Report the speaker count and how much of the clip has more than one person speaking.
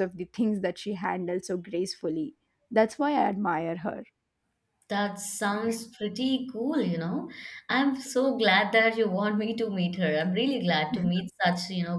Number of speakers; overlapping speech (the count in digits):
2, no overlap